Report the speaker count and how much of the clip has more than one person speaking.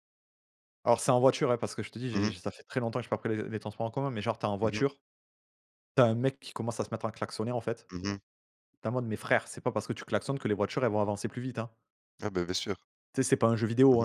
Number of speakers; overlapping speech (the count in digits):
2, about 4%